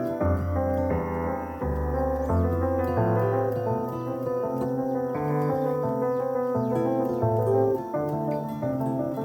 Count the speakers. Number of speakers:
0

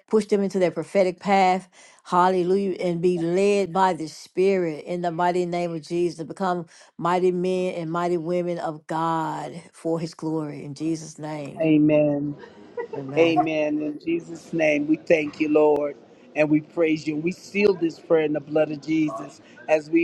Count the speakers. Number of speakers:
2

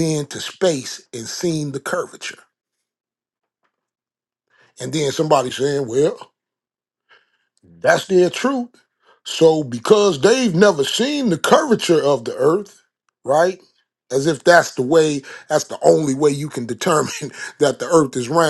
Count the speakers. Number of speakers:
1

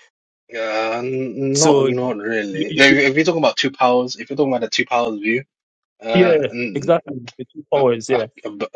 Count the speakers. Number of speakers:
2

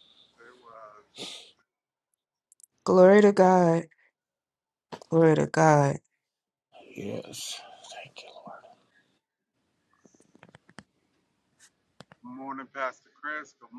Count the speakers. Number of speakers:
3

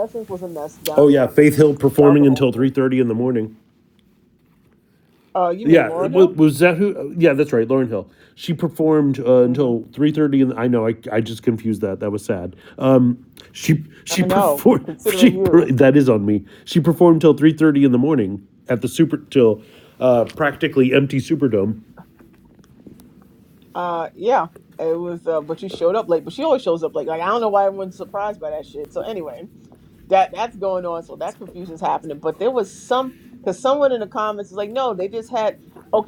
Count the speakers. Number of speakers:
2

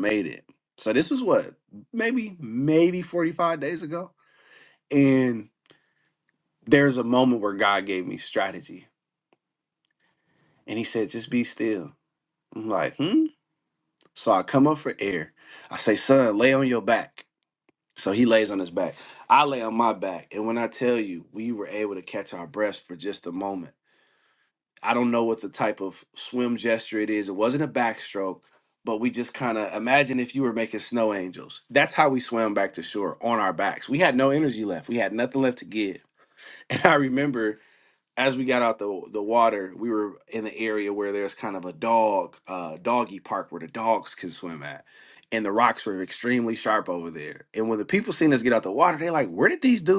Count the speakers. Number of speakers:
1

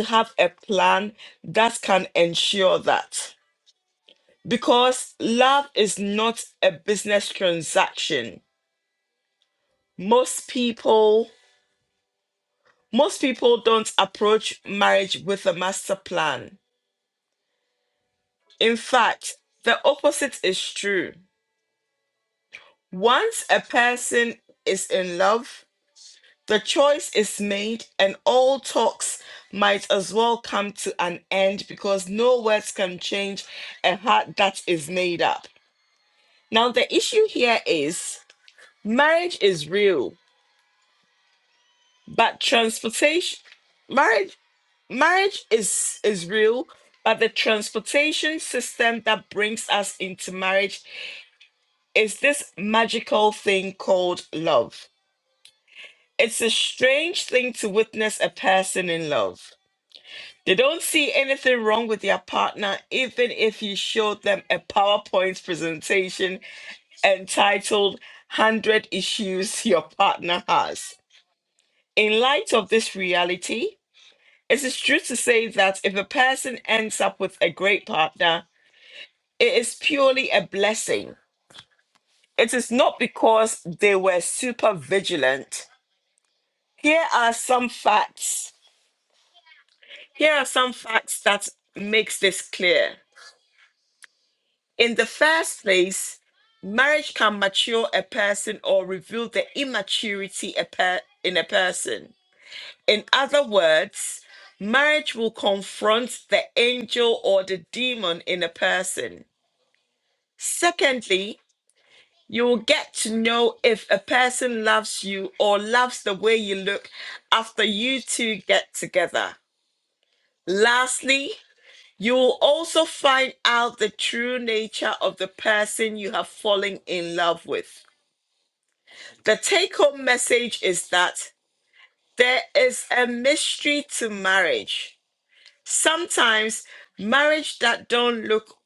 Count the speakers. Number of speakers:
1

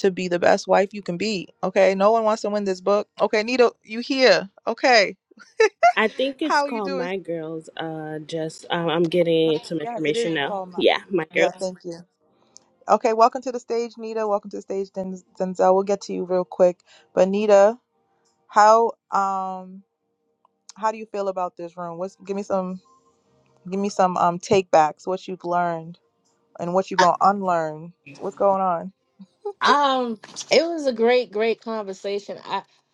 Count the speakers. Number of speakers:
3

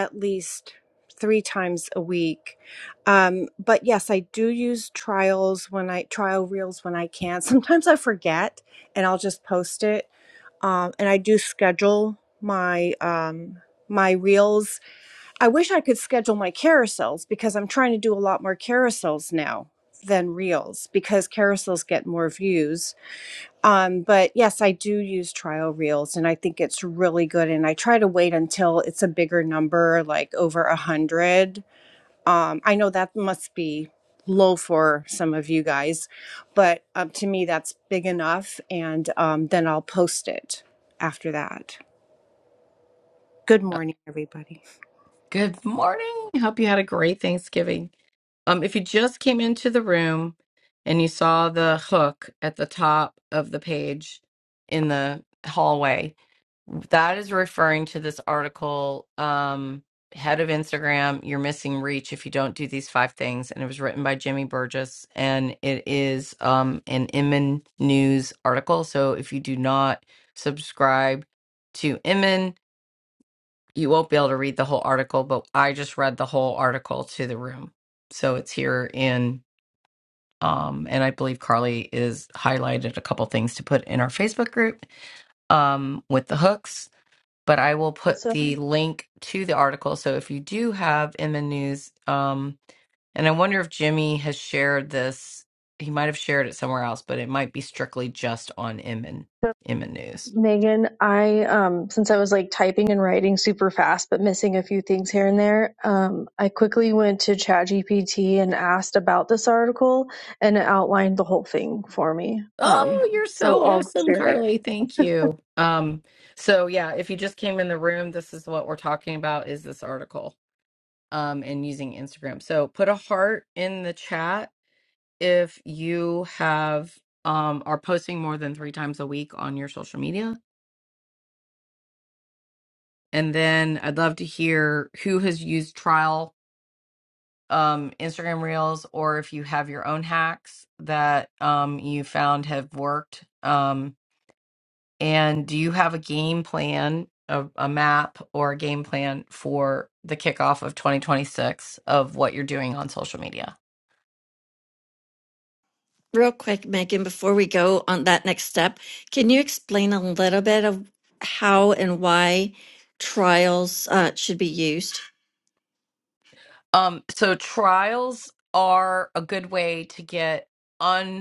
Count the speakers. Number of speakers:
4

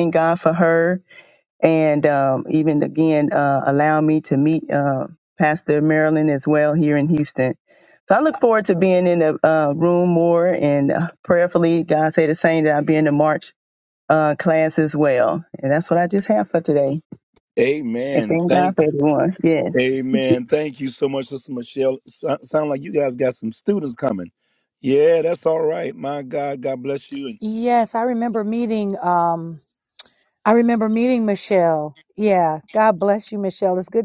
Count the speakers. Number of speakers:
3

